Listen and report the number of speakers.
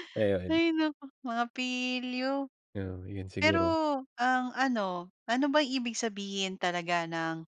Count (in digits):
2